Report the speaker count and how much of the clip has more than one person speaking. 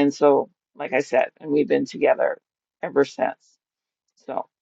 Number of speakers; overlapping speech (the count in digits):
1, no overlap